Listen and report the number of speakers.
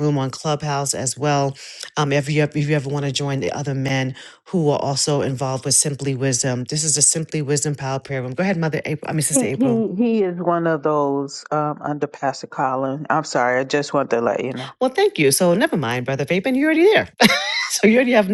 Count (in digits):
2